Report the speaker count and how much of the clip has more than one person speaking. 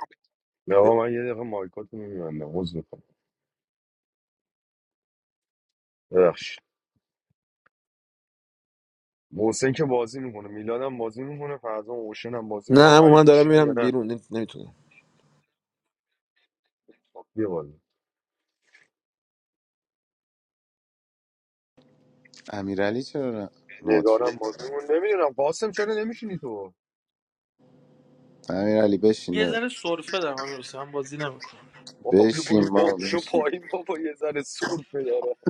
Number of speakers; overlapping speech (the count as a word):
four, about 10%